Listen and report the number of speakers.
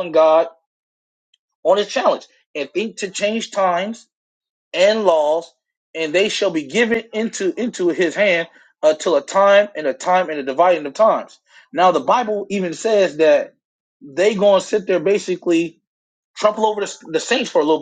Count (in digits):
1